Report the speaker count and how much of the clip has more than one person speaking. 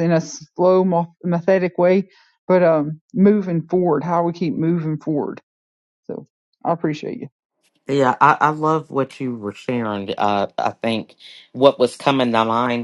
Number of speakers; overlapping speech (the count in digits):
2, no overlap